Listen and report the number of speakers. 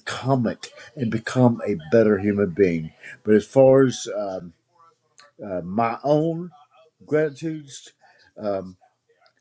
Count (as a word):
one